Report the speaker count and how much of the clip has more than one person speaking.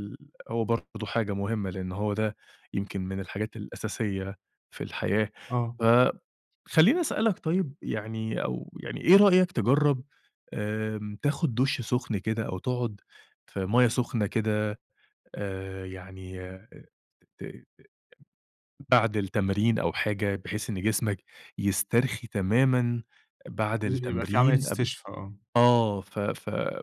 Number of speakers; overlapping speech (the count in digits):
2, about 4%